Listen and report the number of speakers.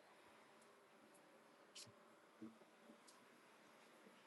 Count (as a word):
zero